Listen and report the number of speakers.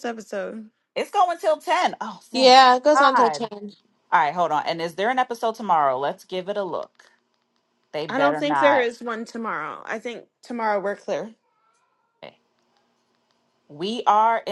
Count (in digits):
3